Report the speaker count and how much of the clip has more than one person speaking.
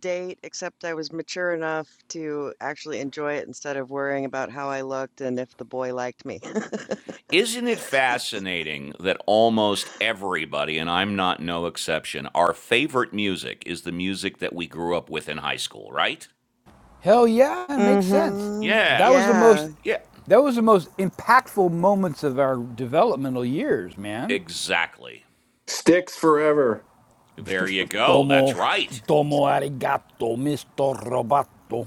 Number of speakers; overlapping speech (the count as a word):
four, about 7%